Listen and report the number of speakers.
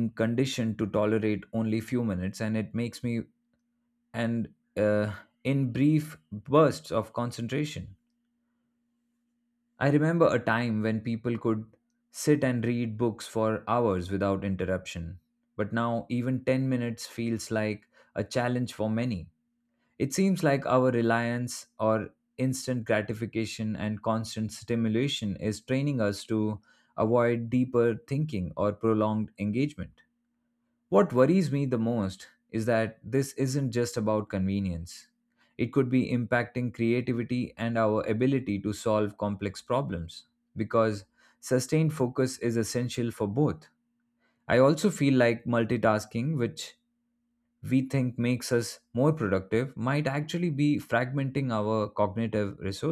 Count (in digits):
1